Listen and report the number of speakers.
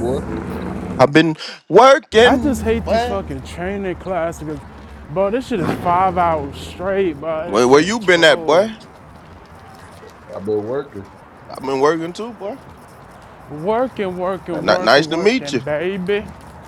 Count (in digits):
3